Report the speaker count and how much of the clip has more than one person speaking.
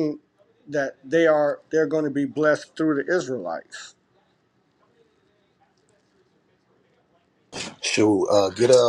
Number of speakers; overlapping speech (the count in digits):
2, no overlap